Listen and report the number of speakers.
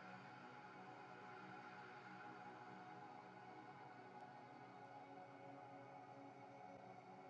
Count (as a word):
zero